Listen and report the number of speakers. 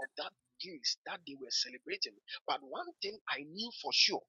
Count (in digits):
1